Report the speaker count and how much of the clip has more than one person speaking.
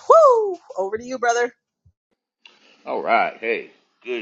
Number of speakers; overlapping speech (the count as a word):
two, no overlap